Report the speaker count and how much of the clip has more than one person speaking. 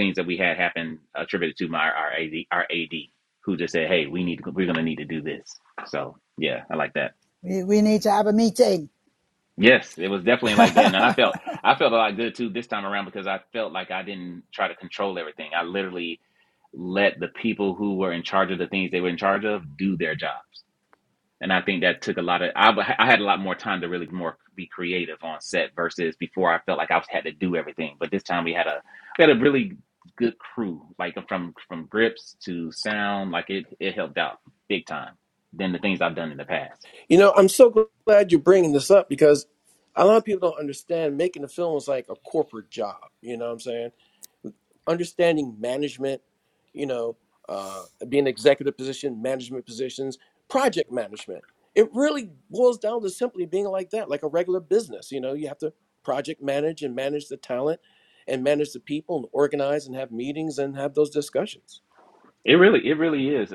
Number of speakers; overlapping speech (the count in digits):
3, no overlap